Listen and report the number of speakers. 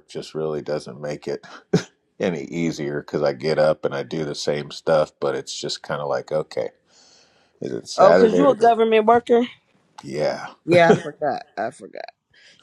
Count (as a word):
two